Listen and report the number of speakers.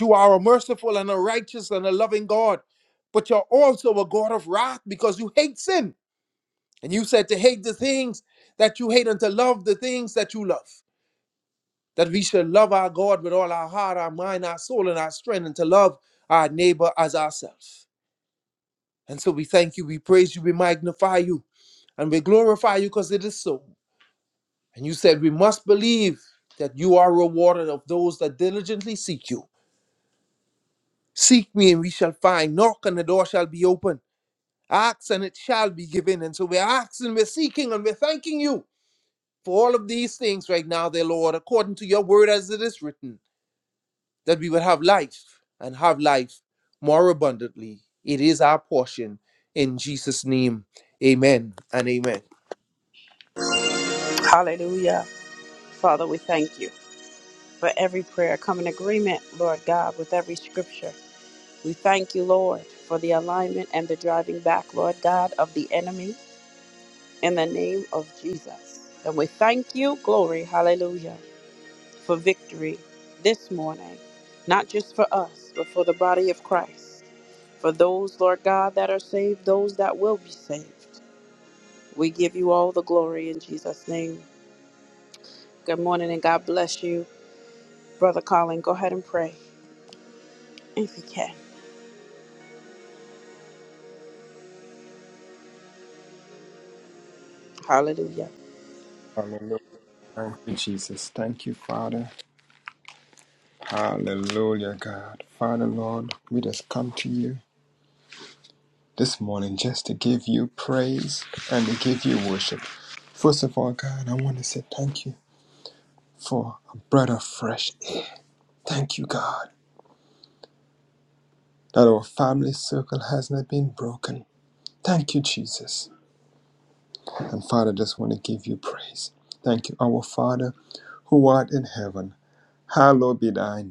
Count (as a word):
three